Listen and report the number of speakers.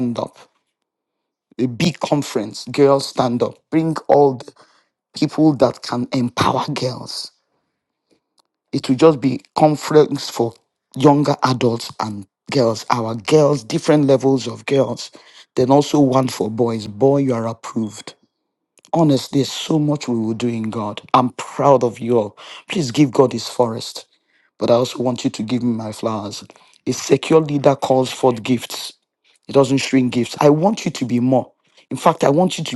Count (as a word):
one